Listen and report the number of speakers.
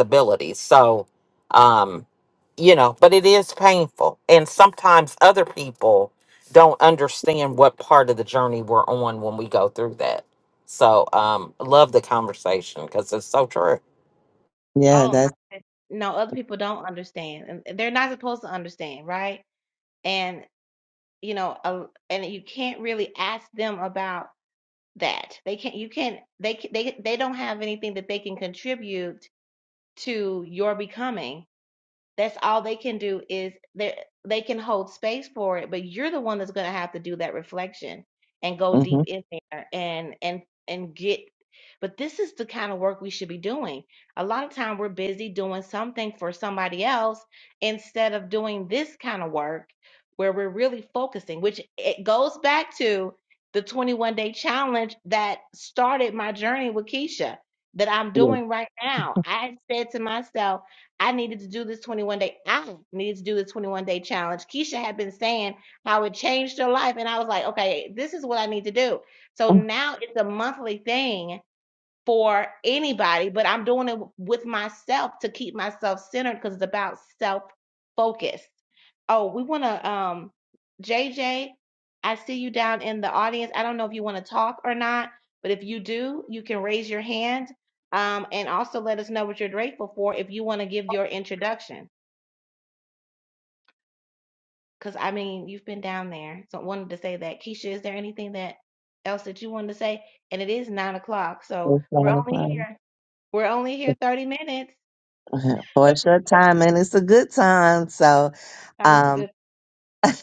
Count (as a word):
three